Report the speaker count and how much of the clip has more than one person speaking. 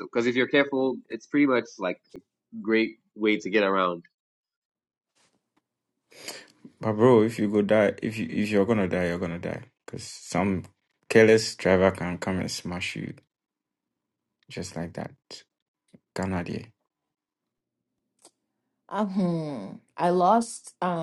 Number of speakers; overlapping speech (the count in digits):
3, no overlap